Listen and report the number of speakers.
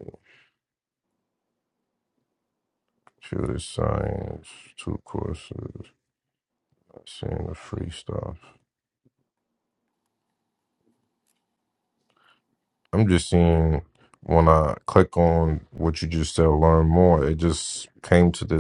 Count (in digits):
1